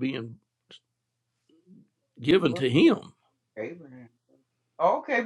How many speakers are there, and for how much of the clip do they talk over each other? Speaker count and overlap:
two, about 9%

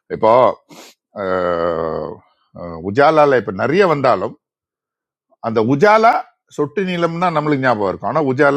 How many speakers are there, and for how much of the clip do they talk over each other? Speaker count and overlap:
one, no overlap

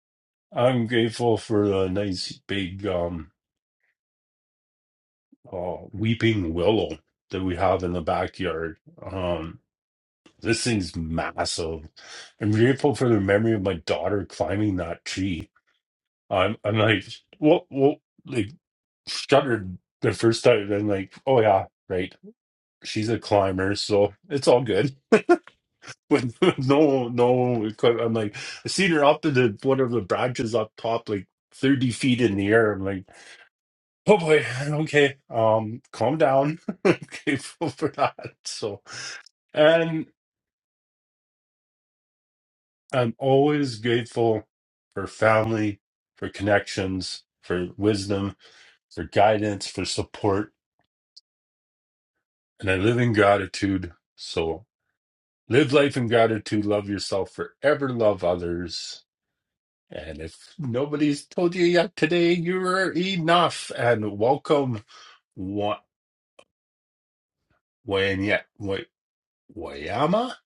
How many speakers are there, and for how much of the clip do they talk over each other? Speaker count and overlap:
one, no overlap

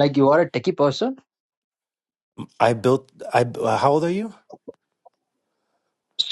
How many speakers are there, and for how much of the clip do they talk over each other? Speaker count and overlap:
two, no overlap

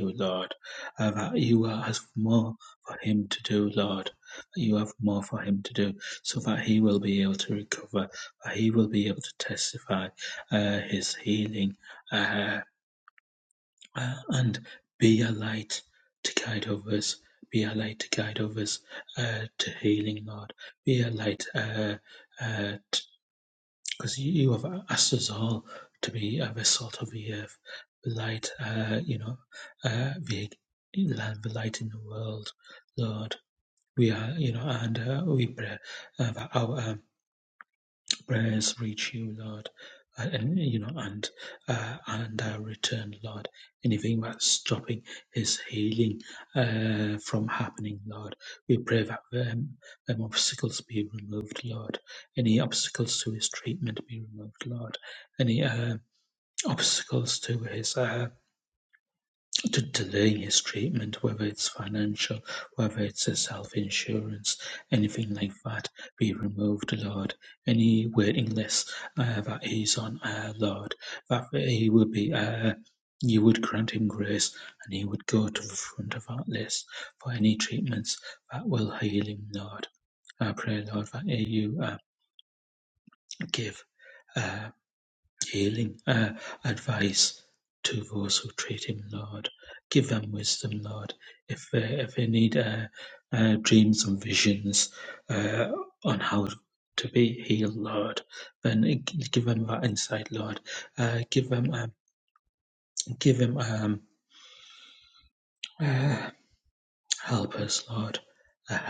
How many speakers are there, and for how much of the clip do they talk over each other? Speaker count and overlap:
one, no overlap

